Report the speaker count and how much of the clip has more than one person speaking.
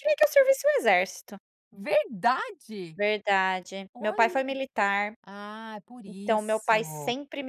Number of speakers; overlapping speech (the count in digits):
2, about 17%